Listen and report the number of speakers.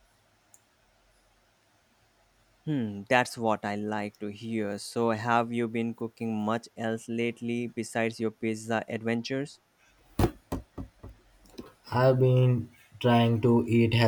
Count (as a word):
two